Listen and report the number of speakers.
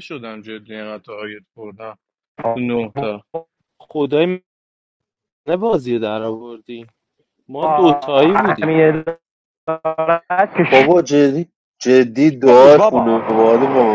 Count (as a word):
four